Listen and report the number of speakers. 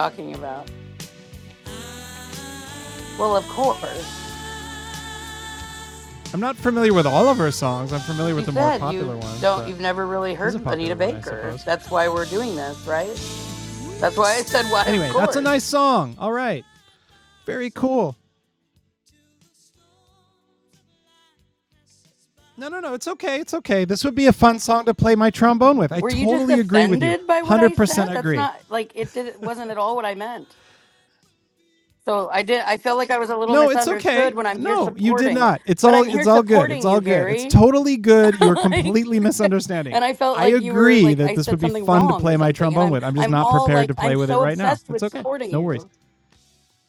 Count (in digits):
2